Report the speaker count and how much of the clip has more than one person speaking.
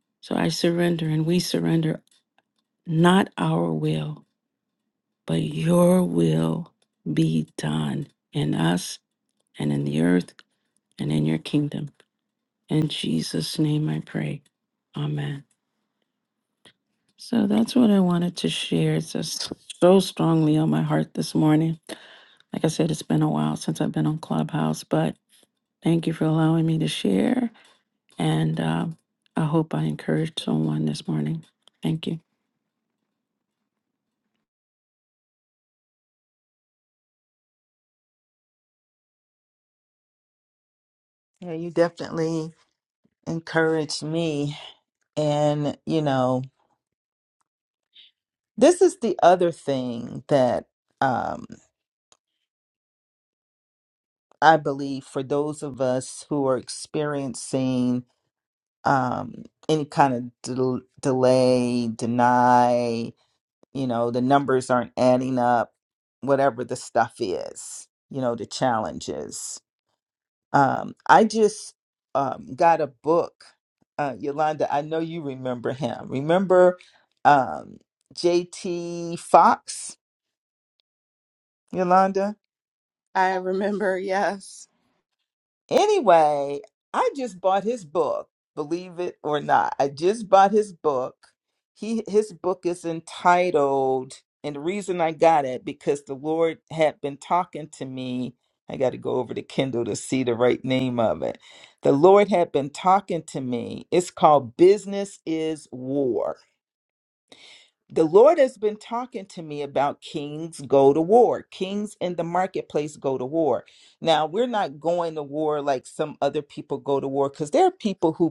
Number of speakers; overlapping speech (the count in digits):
3, no overlap